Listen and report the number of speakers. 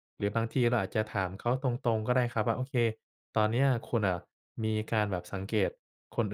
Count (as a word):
one